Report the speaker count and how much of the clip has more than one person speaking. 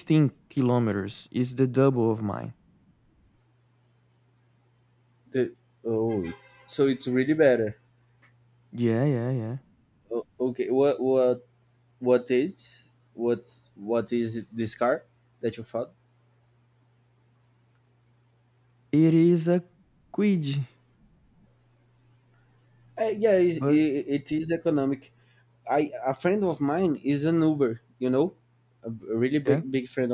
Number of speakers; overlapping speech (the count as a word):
two, about 1%